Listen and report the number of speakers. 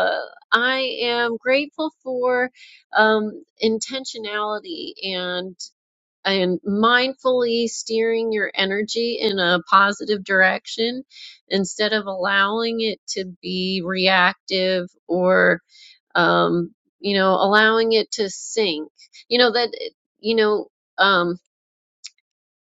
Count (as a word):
one